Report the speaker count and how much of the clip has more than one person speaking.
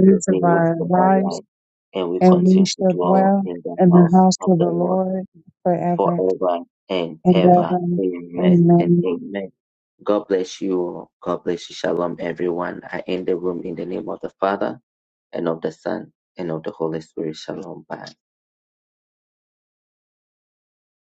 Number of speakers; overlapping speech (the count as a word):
two, about 27%